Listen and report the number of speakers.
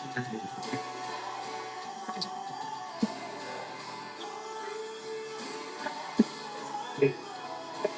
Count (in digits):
0